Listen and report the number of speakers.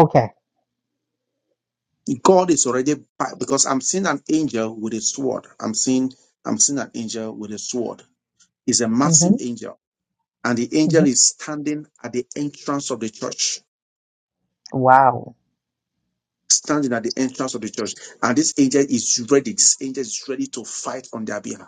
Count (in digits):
2